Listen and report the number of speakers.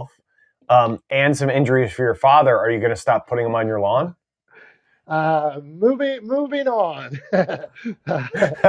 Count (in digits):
2